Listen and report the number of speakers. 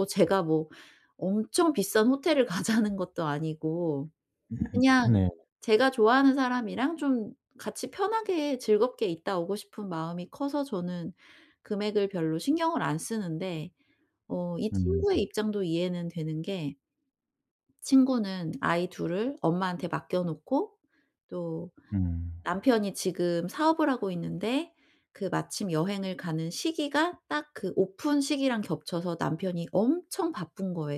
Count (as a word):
two